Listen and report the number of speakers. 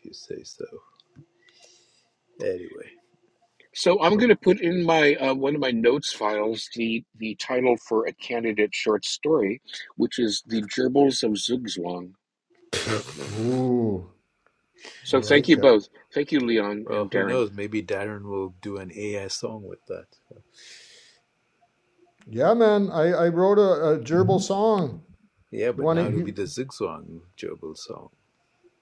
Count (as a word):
three